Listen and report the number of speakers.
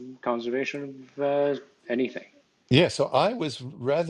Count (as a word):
two